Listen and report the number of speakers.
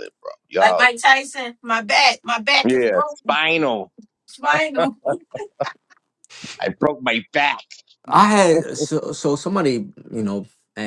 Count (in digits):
3